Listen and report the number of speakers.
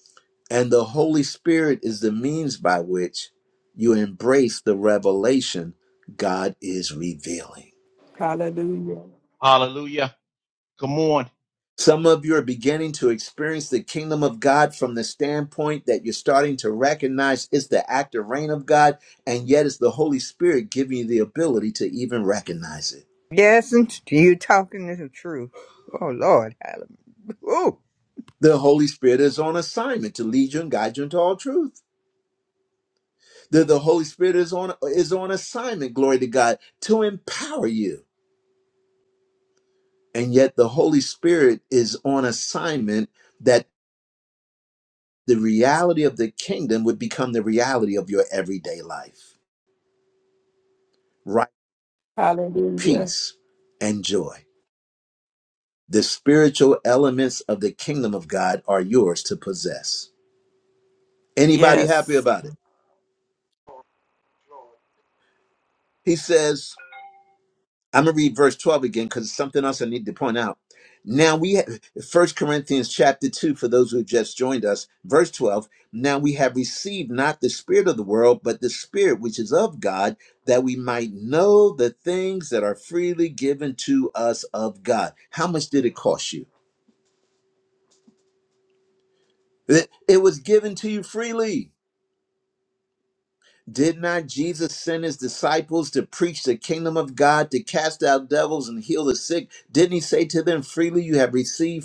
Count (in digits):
4